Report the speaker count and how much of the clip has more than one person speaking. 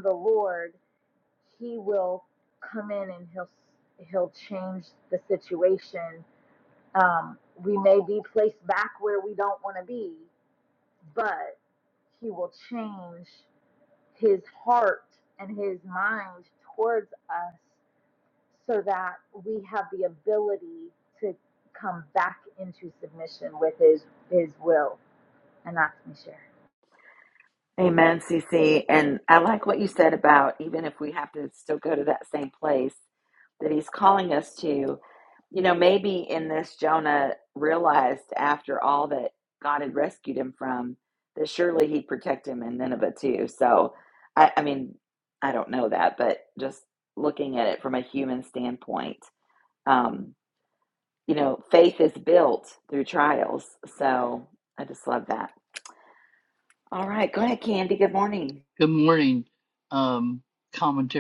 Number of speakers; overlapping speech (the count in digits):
3, no overlap